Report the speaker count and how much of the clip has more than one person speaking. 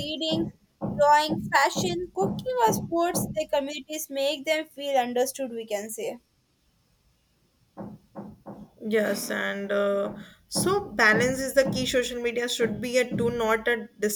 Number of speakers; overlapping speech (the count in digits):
2, no overlap